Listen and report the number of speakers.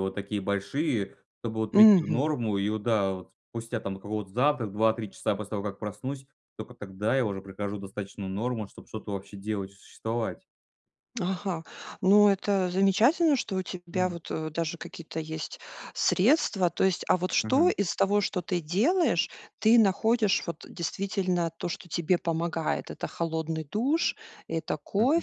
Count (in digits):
2